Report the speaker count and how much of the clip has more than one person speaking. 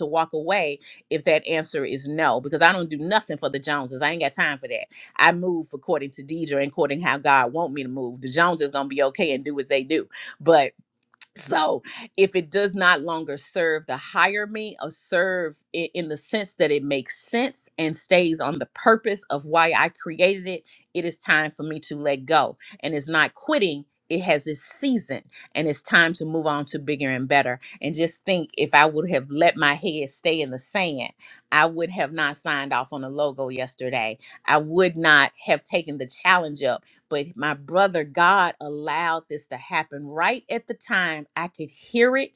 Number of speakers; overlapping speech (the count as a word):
one, no overlap